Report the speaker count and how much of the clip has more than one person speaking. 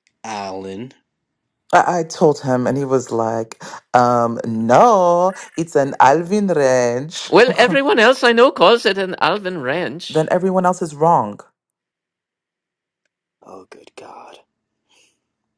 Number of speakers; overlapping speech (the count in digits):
3, about 1%